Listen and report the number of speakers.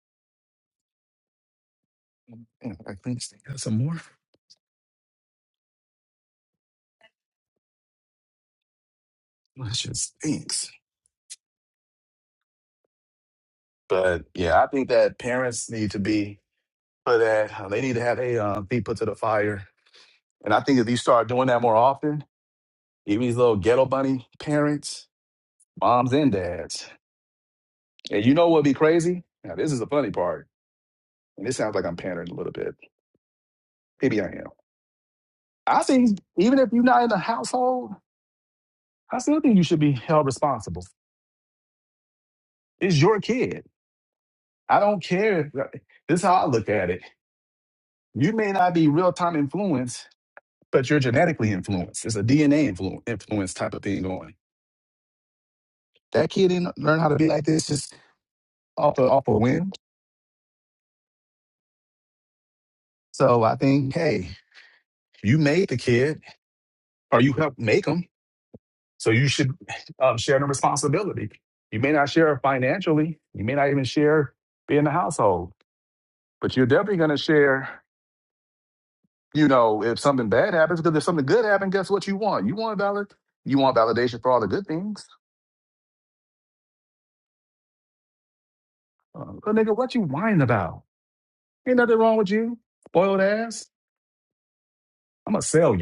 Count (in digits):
1